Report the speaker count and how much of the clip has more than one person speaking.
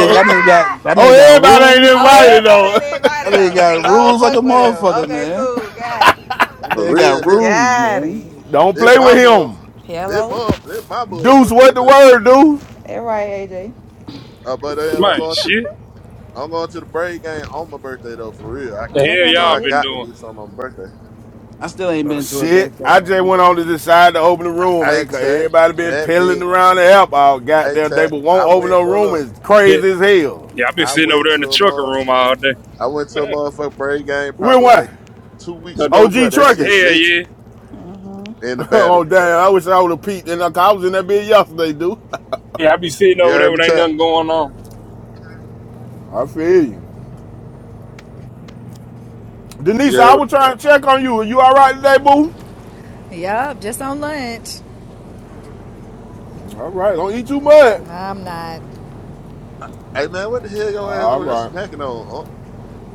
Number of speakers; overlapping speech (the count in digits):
6, about 29%